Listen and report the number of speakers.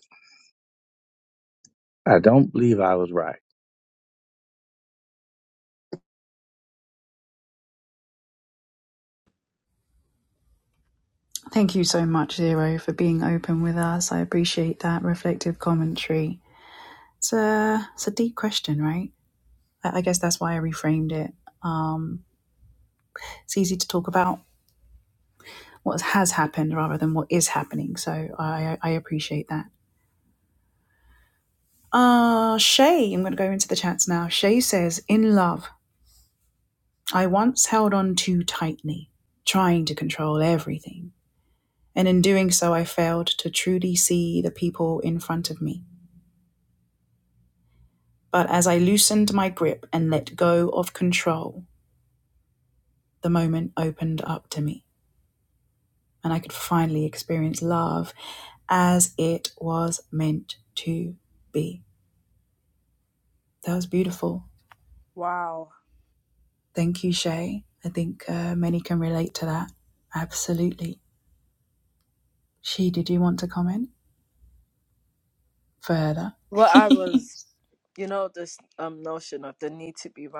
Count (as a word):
three